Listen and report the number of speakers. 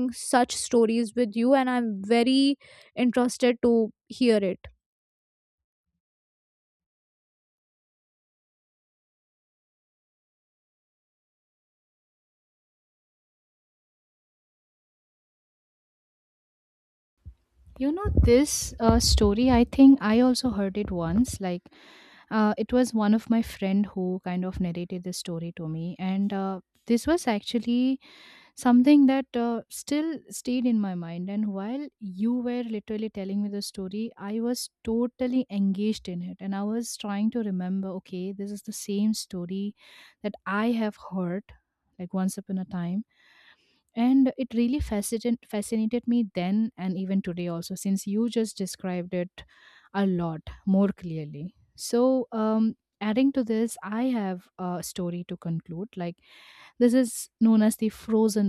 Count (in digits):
2